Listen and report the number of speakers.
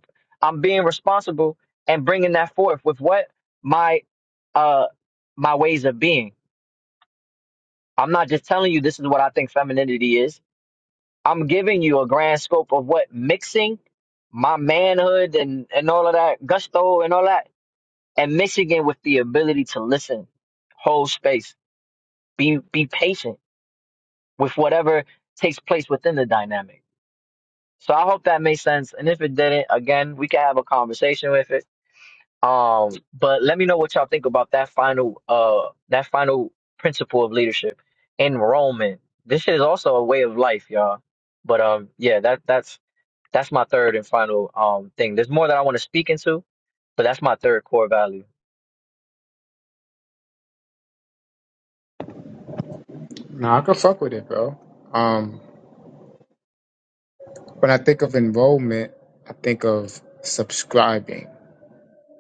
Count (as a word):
two